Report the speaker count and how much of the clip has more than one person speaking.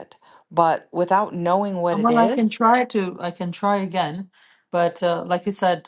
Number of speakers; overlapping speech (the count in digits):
2, about 9%